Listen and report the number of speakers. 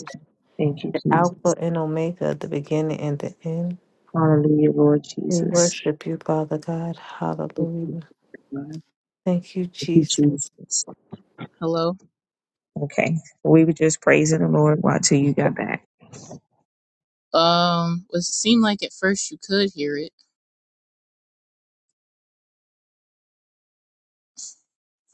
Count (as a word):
three